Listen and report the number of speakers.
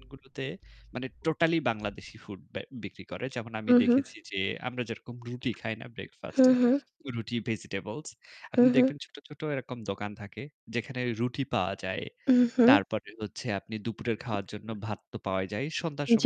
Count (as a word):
two